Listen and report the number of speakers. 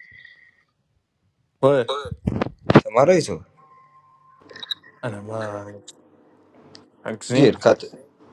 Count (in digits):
2